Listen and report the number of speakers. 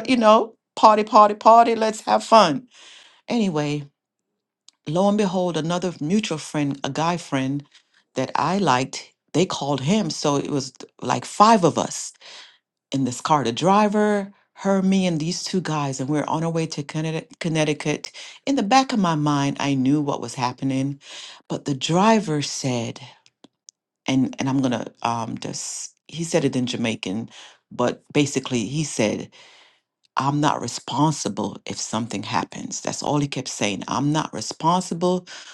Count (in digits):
1